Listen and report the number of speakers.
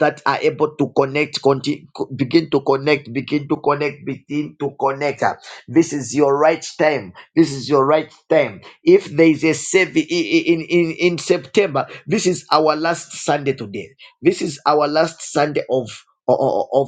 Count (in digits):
1